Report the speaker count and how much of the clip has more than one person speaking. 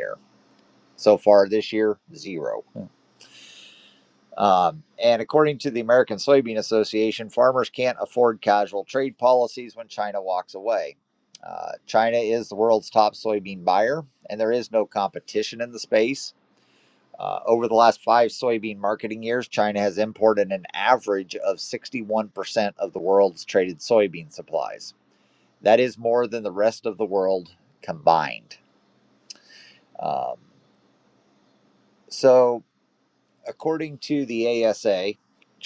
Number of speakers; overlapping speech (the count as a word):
one, no overlap